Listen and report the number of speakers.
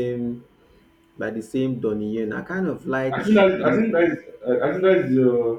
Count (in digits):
2